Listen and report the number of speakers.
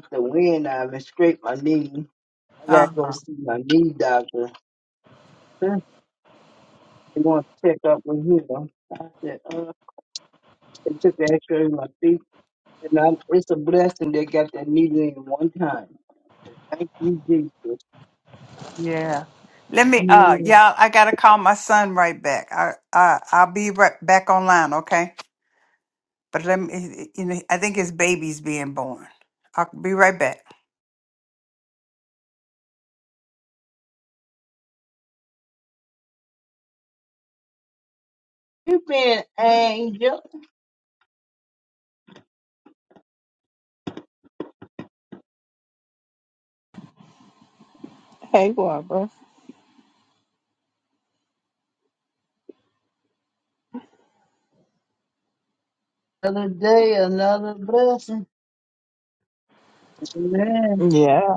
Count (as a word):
three